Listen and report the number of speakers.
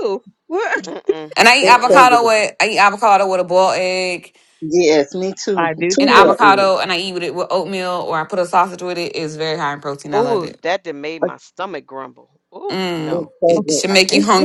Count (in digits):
4